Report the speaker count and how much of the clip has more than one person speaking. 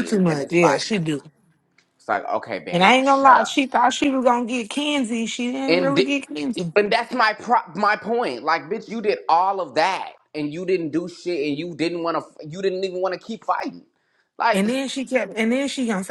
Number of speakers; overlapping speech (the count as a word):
two, about 16%